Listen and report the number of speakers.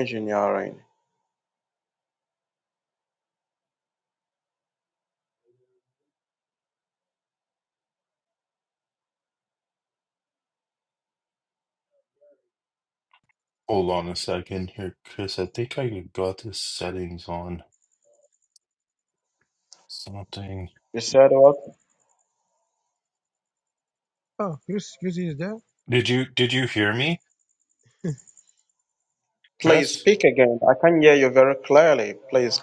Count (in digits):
3